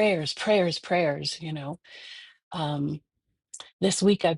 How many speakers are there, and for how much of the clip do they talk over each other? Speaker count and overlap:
one, no overlap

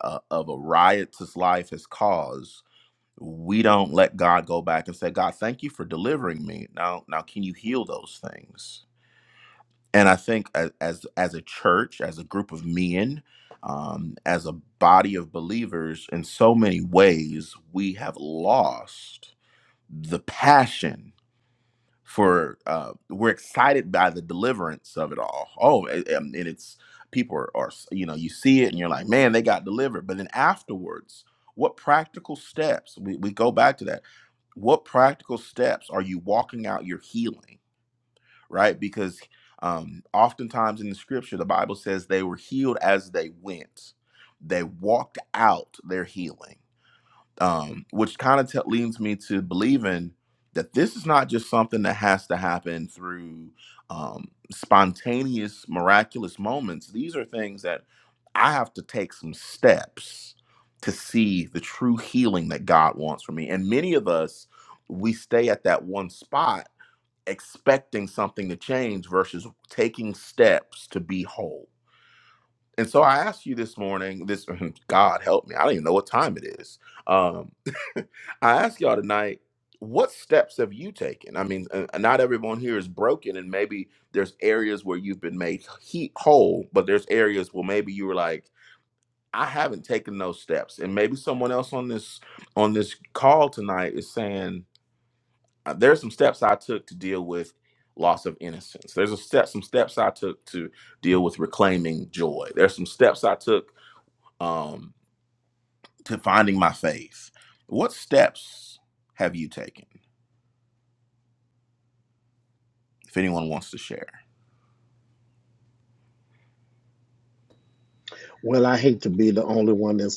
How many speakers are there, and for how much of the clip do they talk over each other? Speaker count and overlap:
two, no overlap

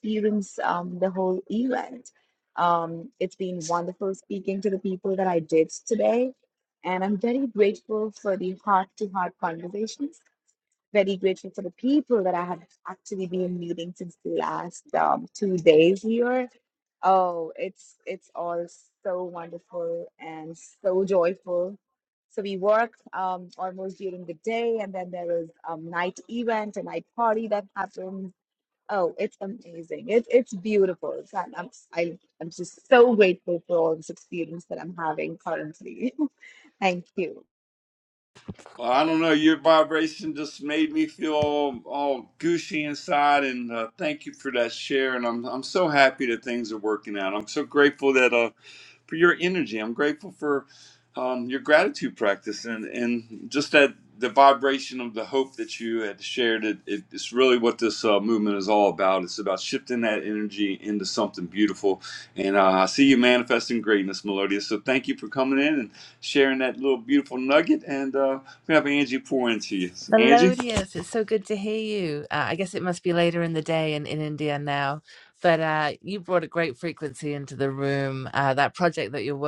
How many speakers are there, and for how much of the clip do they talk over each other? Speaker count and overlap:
three, about 1%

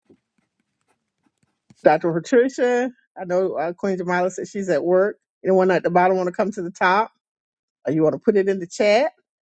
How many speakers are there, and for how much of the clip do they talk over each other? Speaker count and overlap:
one, no overlap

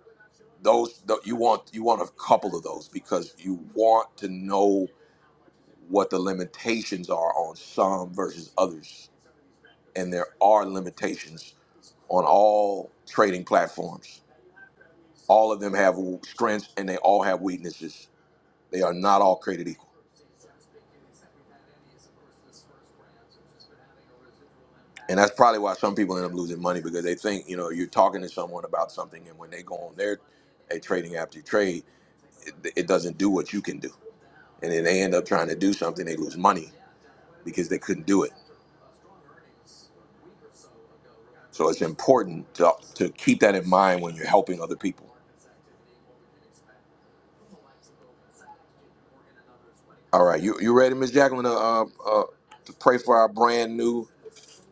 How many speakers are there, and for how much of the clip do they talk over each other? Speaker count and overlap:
one, no overlap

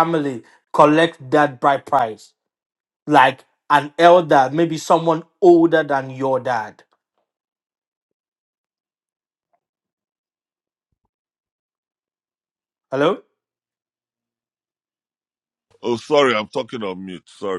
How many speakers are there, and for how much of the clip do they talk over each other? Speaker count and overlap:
two, no overlap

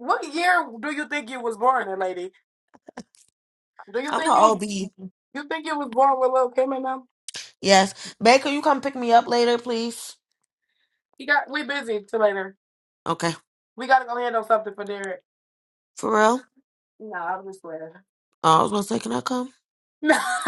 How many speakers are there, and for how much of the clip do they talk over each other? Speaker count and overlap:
two, about 3%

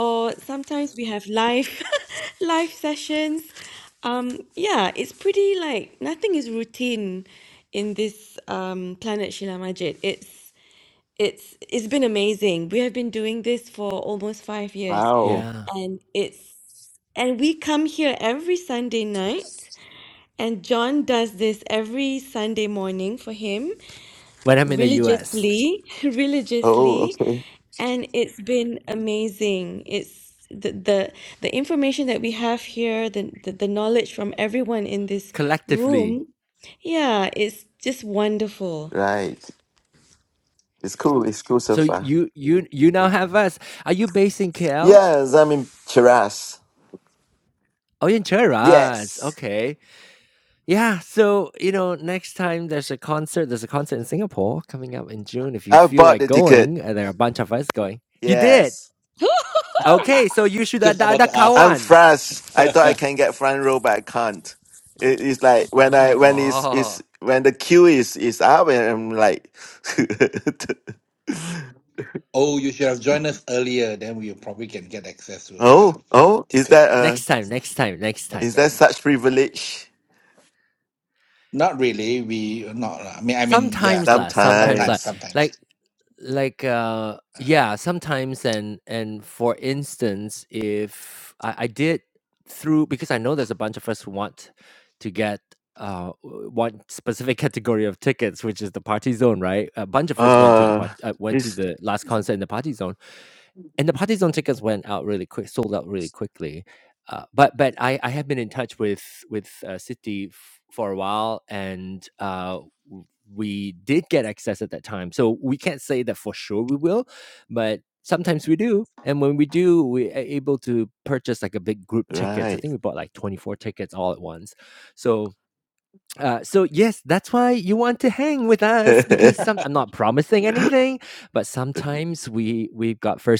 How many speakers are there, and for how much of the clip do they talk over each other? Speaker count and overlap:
four, about 8%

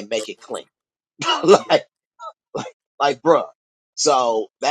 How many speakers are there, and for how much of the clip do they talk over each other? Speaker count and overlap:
one, no overlap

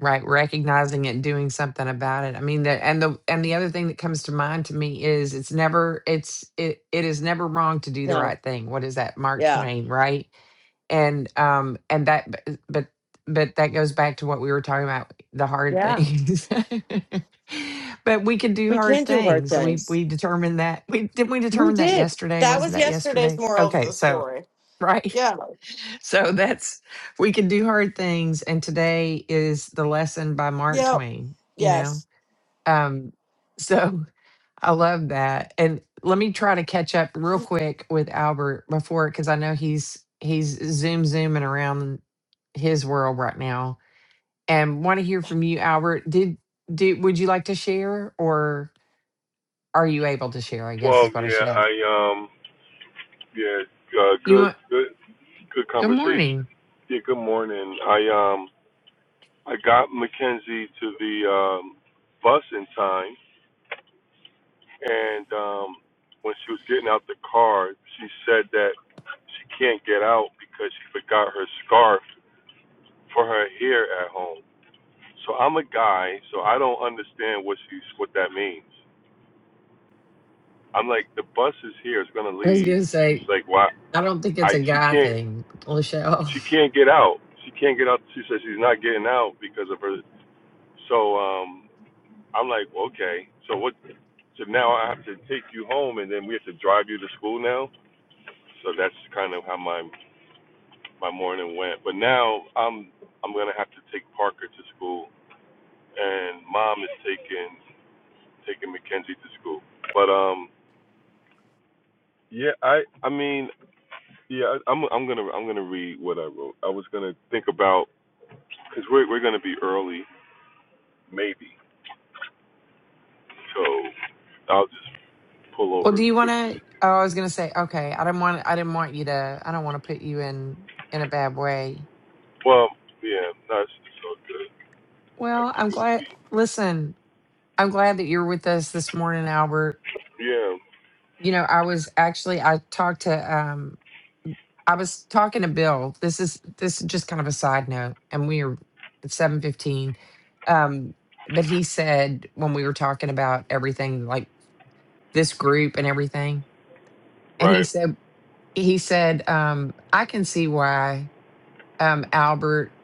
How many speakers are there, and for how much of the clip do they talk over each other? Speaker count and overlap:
three, about 7%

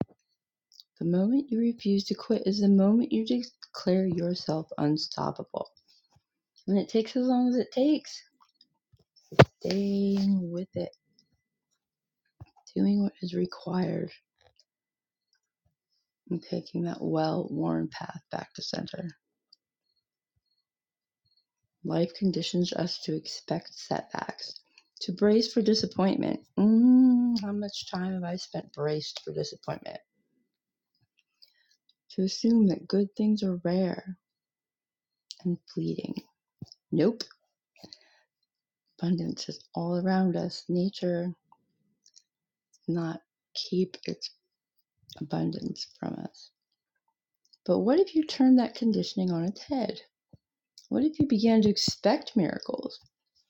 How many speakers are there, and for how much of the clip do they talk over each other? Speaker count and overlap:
one, no overlap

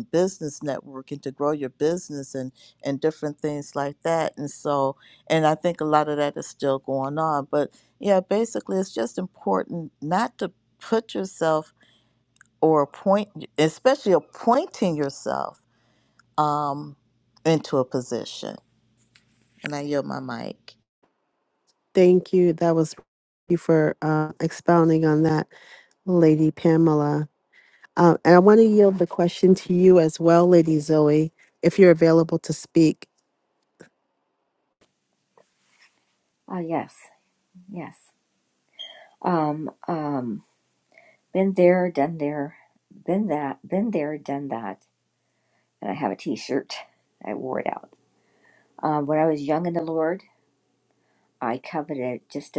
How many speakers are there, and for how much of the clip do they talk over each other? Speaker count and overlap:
three, no overlap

